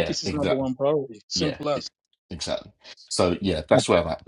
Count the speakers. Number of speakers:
2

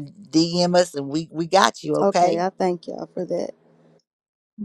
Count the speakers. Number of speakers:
2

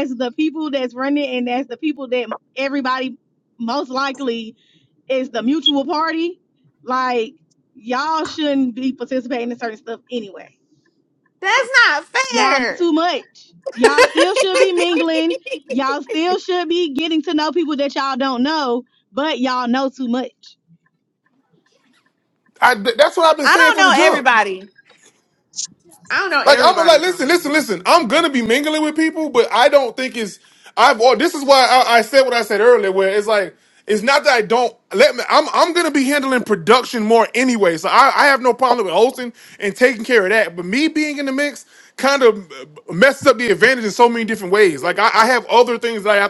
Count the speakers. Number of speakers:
3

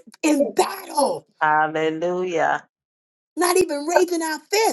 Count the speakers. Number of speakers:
2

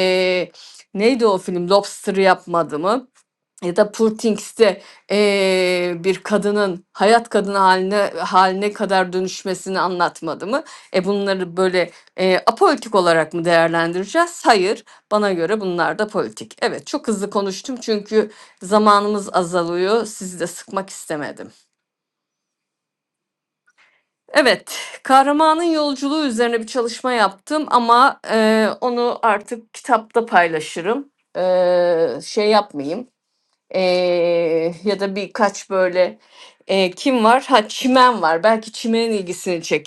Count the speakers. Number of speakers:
1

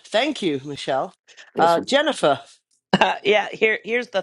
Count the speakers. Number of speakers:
2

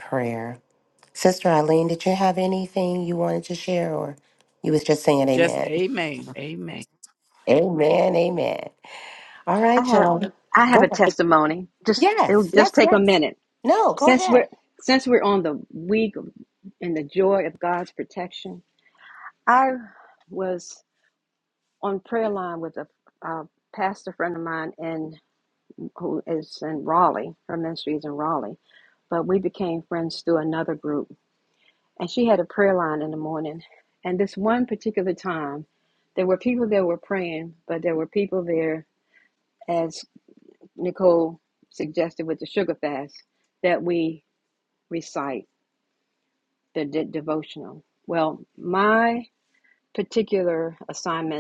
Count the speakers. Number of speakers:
3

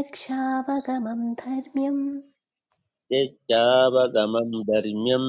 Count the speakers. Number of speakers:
2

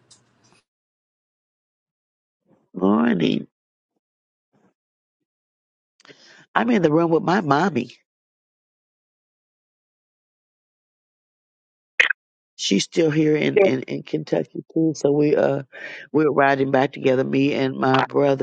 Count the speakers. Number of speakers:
1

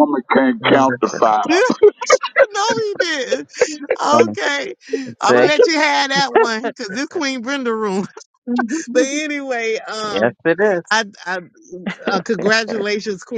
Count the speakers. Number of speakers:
3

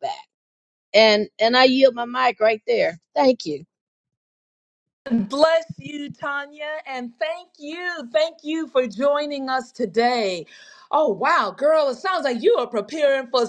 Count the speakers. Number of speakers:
2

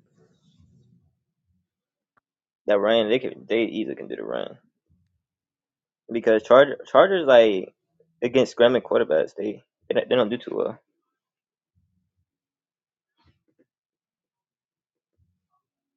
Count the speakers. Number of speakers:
1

